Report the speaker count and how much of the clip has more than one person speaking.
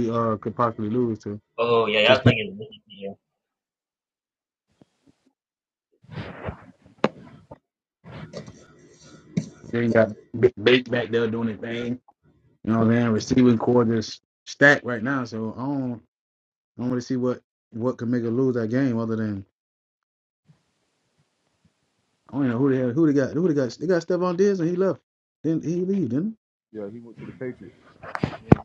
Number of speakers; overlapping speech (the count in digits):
3, about 1%